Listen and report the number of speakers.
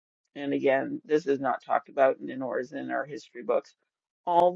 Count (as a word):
one